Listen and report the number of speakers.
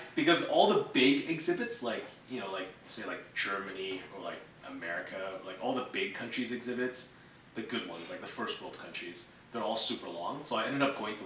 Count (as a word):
one